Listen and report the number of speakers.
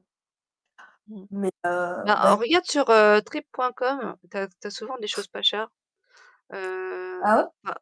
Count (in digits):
2